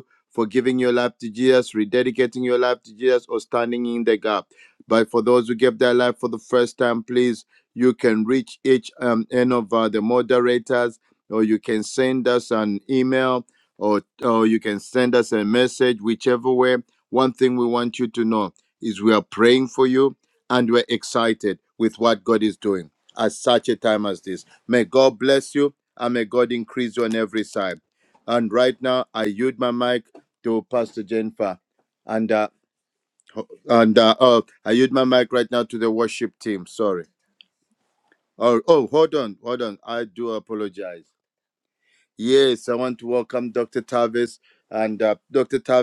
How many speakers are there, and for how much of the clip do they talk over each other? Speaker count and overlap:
one, no overlap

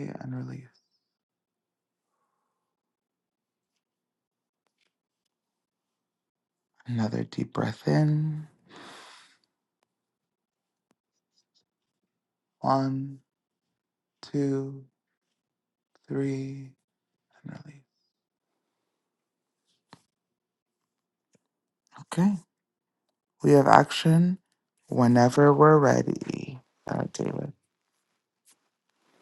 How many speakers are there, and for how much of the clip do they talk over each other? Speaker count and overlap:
one, no overlap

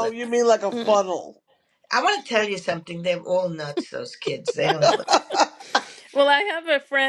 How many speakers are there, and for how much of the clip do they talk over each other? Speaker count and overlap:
three, about 5%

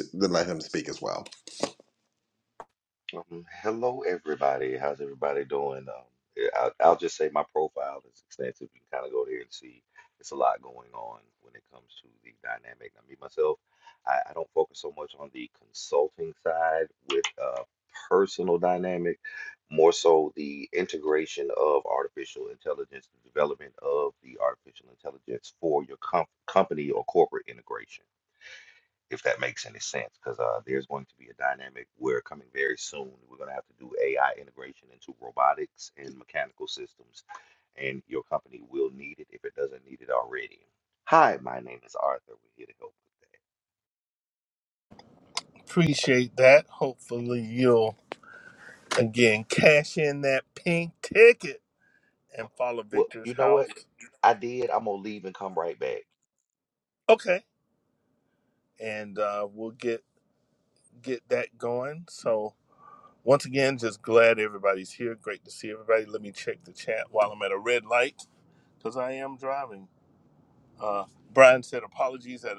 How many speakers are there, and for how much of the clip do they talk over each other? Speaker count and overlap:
three, about 1%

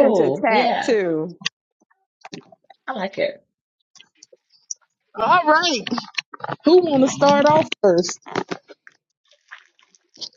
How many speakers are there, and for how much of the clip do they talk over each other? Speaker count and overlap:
three, about 14%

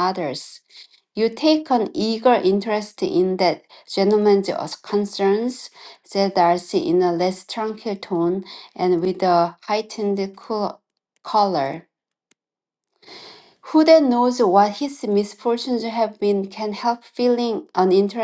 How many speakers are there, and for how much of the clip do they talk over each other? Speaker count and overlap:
one, no overlap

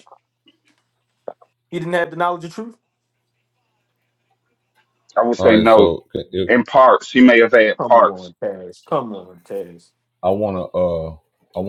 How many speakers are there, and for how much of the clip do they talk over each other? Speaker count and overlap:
three, about 8%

